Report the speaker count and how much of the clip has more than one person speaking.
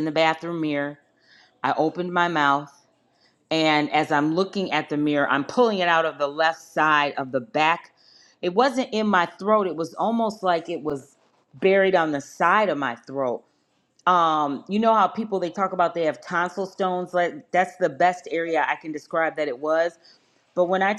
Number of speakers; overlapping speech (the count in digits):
1, no overlap